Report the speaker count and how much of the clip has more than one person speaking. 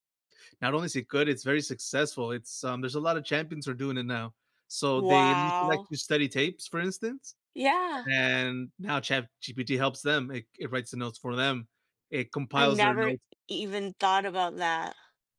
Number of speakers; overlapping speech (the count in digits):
2, about 9%